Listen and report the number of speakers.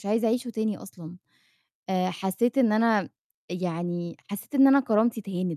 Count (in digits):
1